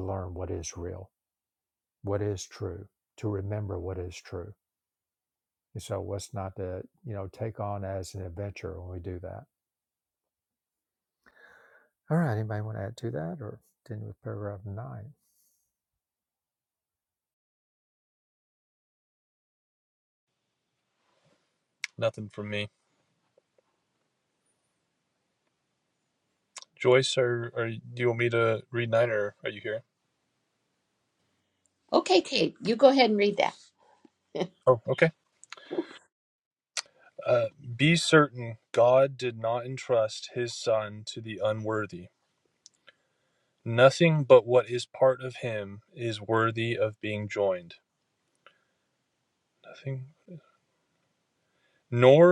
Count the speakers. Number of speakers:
3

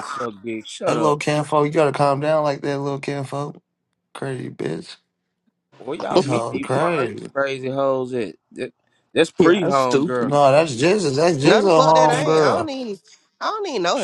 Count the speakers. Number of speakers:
3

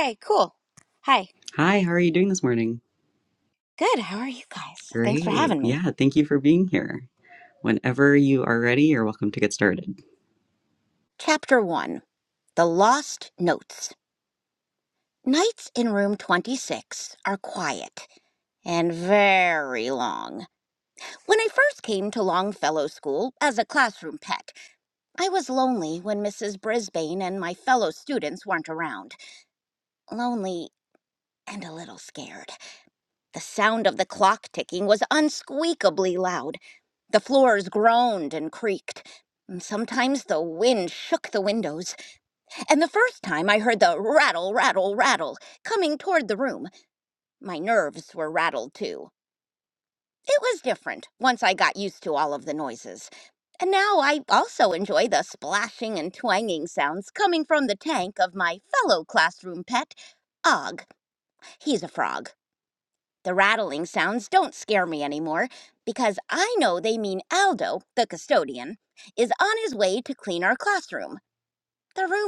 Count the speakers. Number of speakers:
2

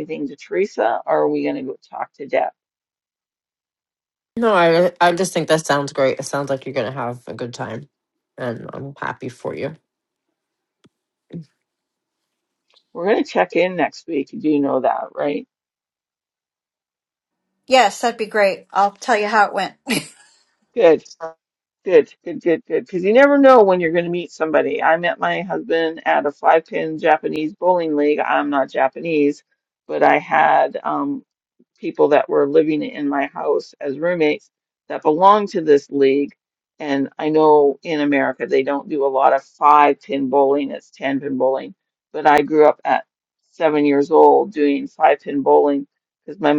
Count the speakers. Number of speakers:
3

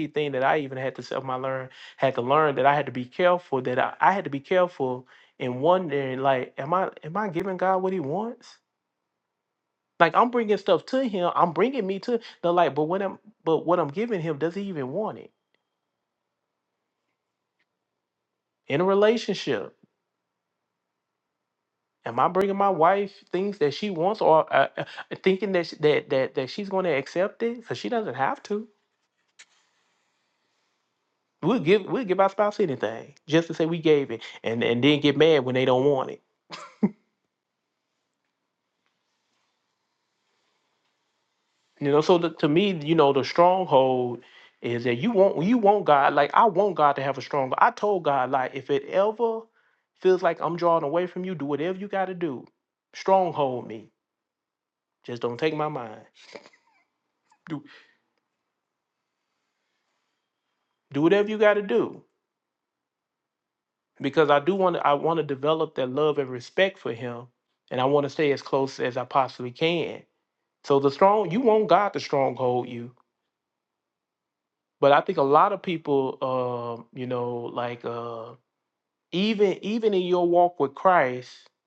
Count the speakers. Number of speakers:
1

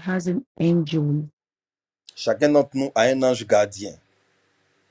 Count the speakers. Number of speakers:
2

